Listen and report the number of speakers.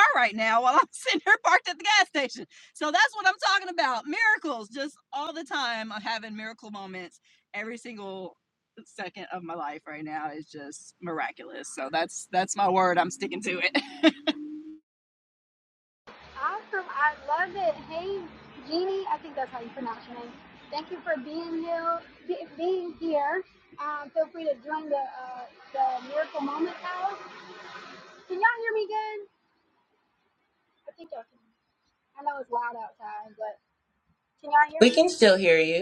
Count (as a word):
three